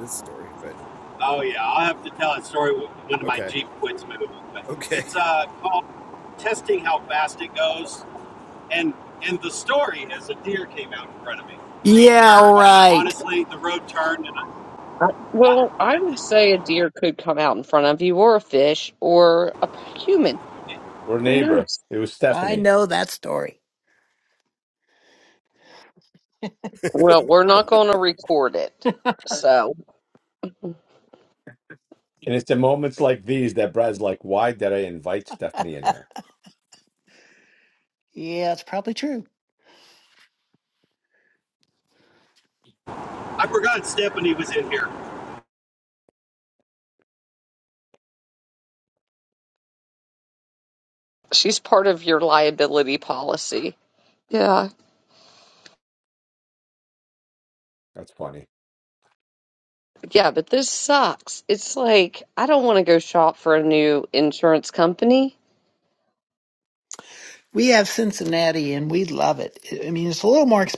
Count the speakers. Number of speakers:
five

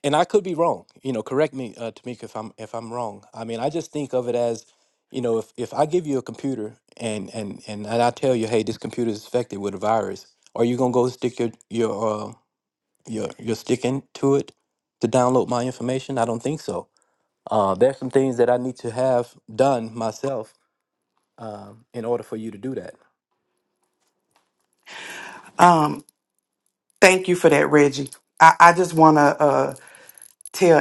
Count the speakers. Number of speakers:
two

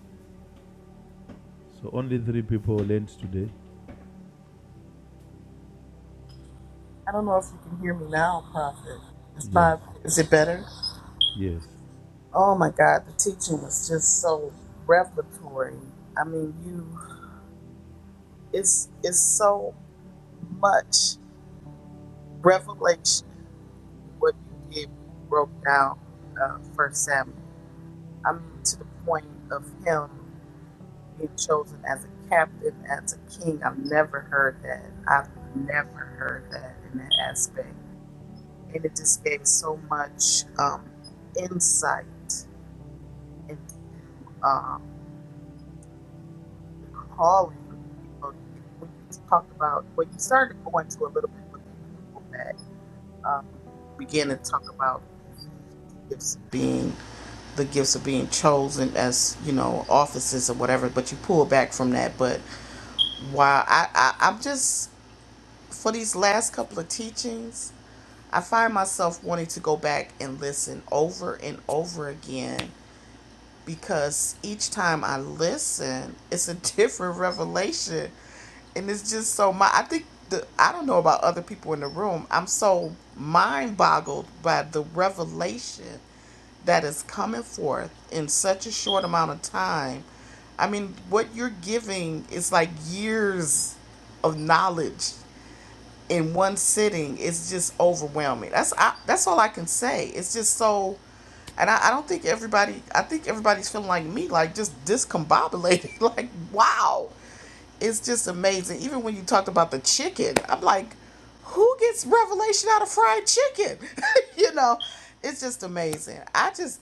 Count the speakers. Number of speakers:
two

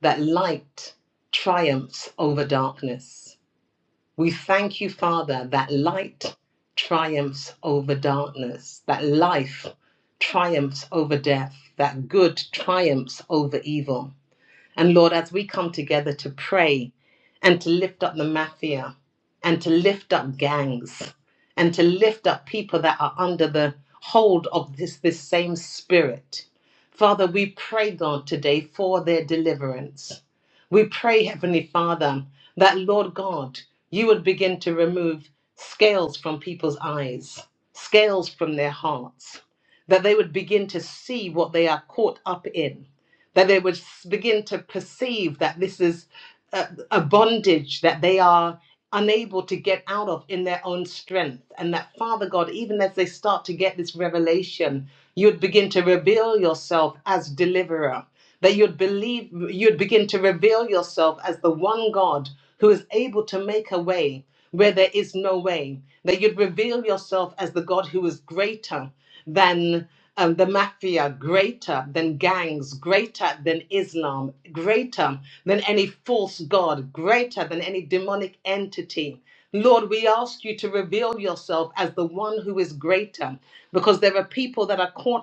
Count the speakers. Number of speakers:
one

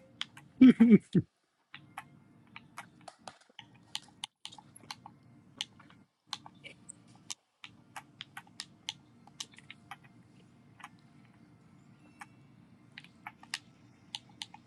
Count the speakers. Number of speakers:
zero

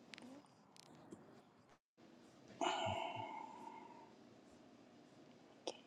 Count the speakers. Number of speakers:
zero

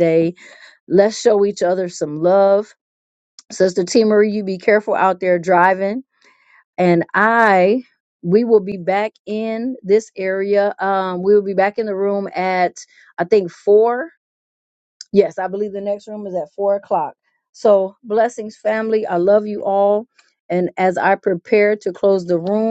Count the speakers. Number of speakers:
one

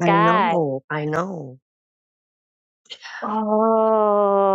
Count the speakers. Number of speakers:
two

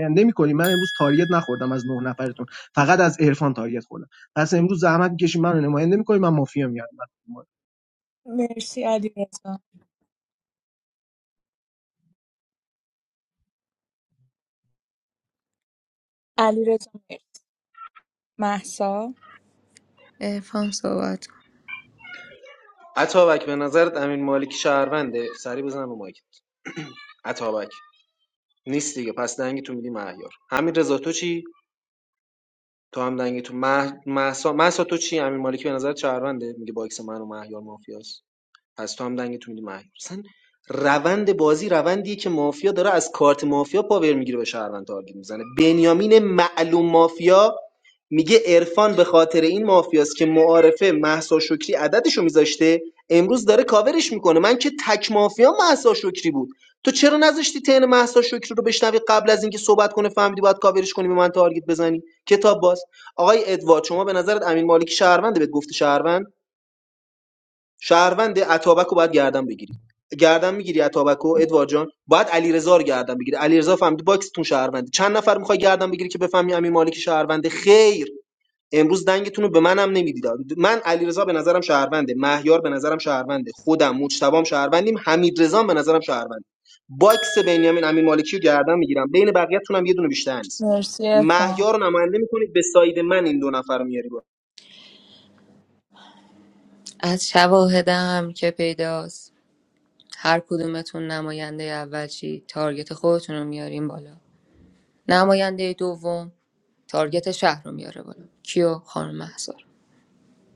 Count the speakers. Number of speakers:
four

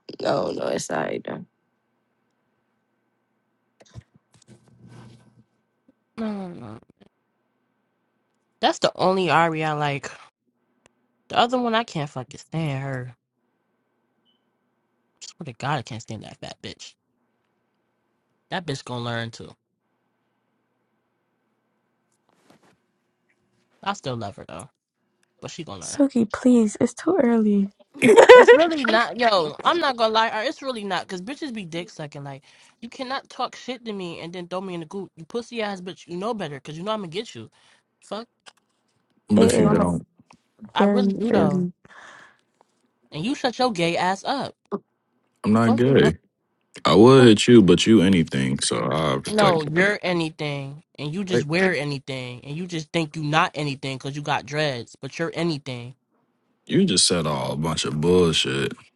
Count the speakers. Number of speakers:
four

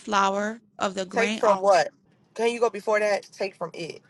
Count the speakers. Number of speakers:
two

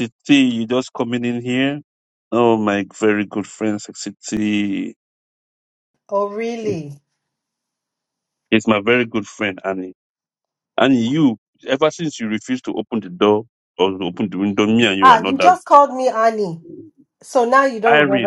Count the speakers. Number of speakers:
two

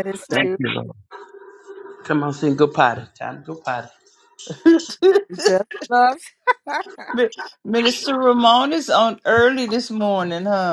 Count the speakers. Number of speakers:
three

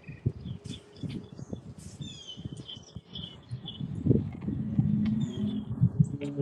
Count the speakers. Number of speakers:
zero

